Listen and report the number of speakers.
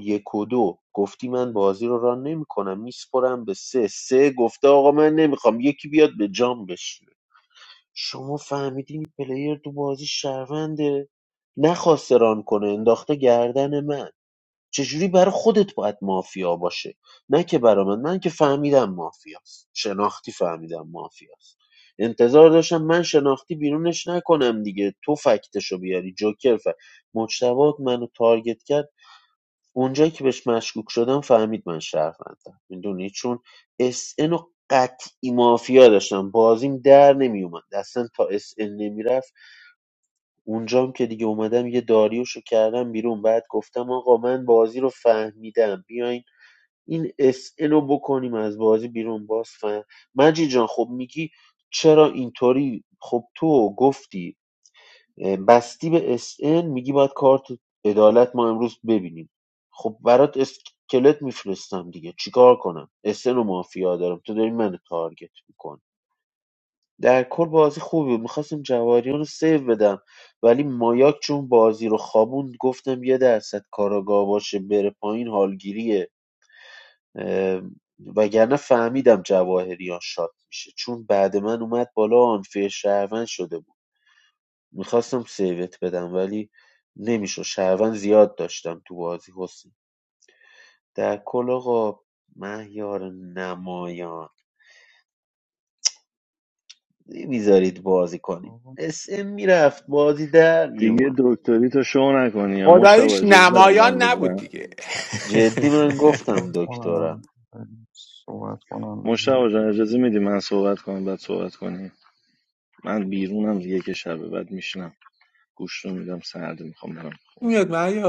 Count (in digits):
4